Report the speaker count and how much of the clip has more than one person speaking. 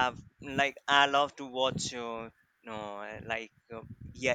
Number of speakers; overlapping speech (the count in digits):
1, no overlap